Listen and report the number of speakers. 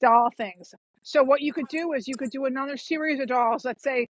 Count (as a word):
one